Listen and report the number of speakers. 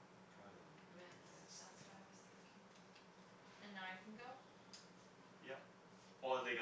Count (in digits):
2